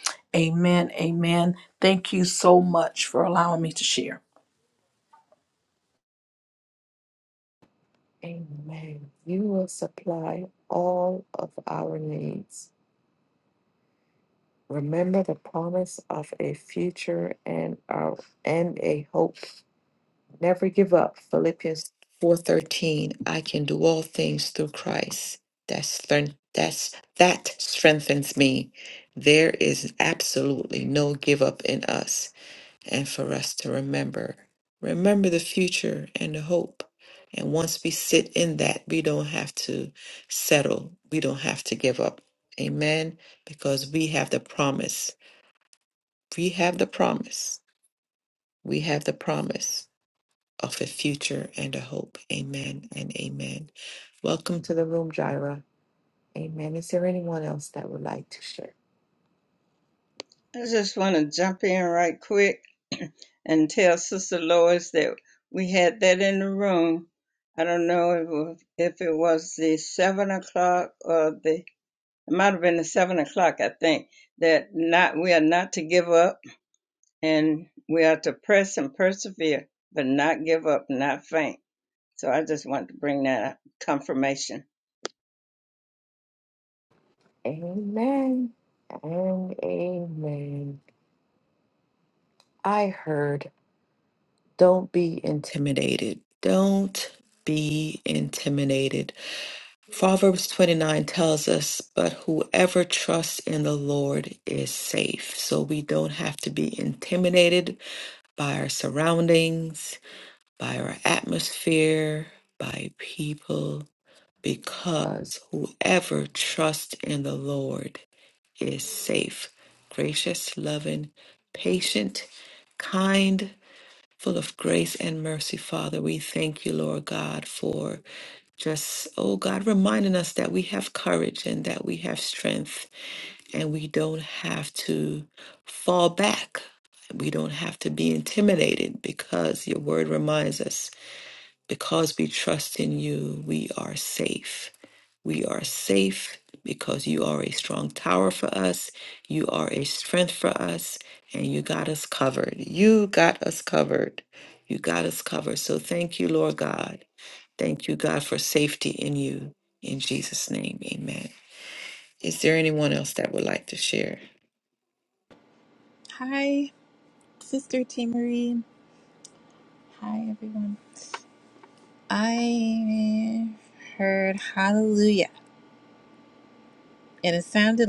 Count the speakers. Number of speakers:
4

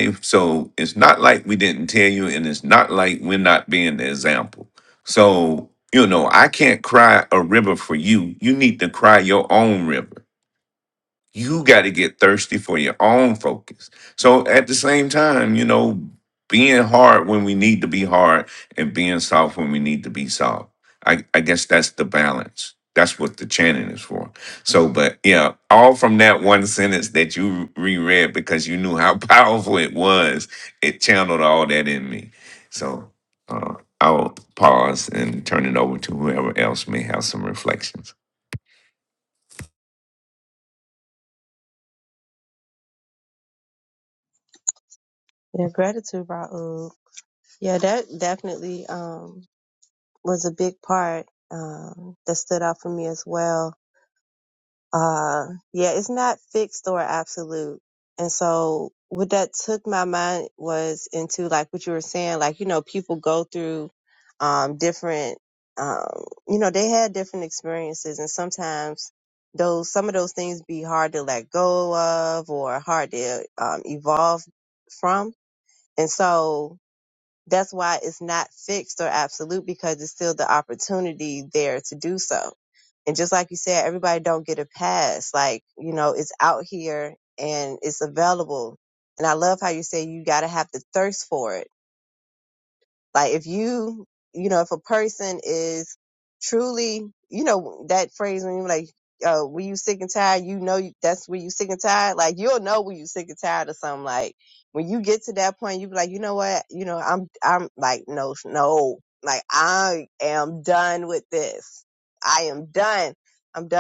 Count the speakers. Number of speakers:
2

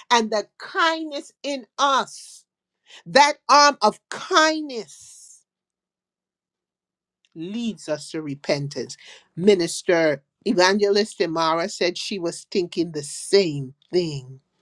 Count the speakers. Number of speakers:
1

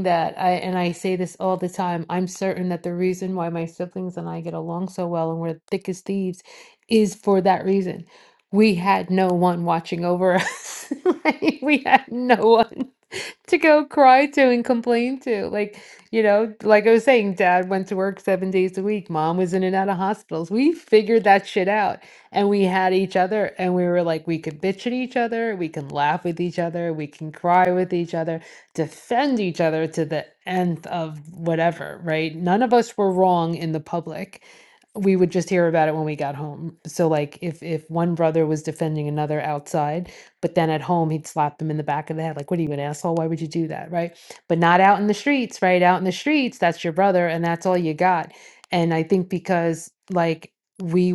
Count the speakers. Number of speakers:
1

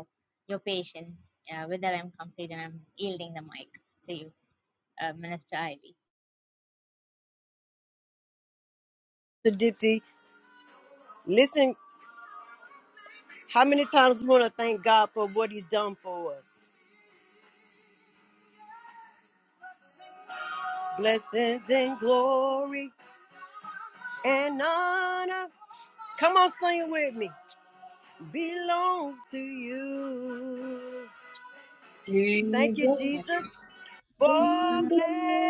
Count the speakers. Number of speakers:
3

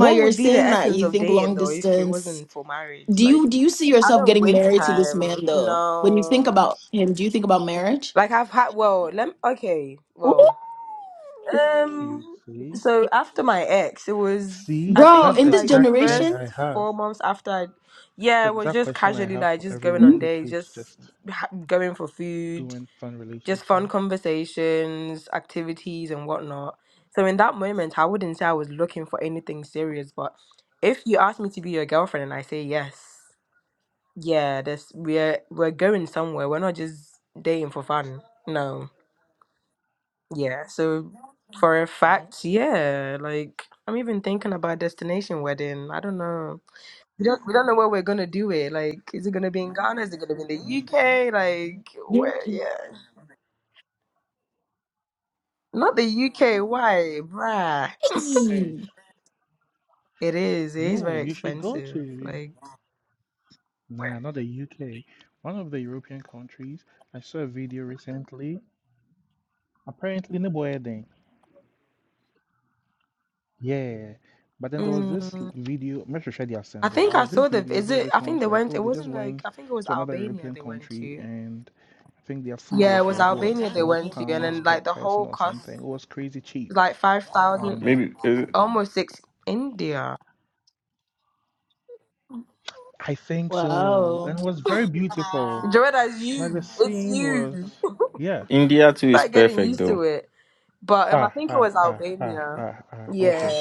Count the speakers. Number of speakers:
4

